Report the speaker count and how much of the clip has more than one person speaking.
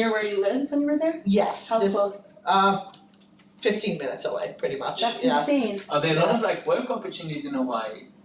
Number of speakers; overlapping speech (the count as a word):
three, about 19%